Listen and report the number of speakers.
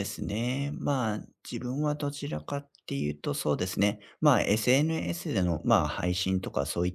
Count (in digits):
1